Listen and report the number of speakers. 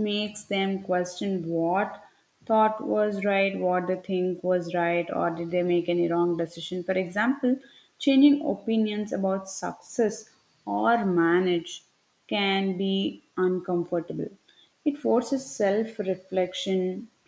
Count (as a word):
one